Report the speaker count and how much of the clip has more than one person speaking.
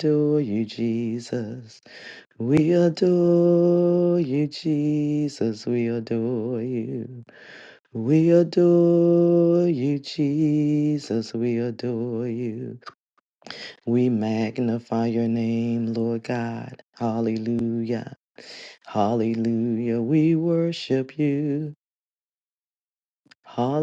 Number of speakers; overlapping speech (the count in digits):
1, no overlap